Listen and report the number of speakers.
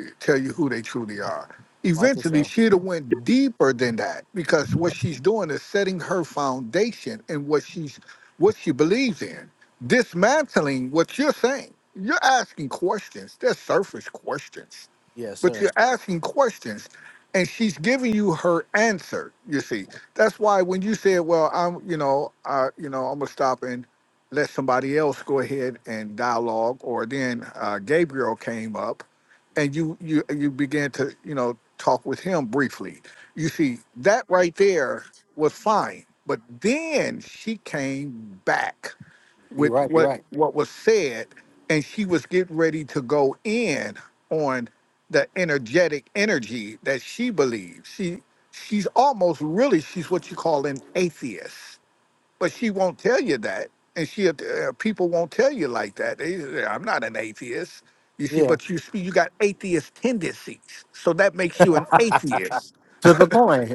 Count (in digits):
2